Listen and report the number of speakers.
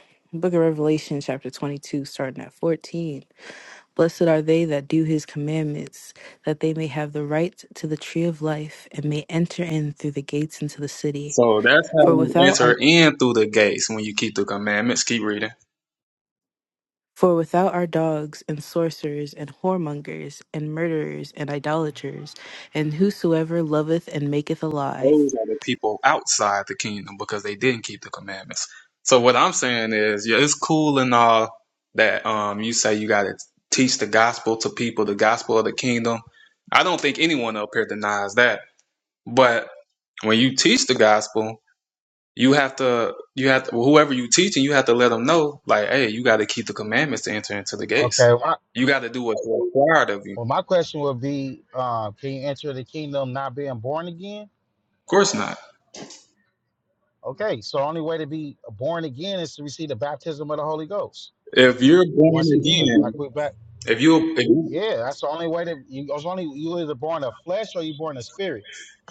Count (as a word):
three